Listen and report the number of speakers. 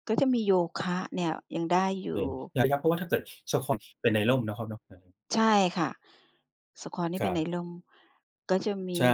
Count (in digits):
2